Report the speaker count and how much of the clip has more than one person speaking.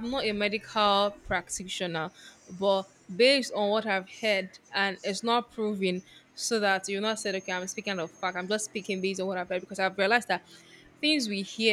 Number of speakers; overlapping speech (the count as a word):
one, no overlap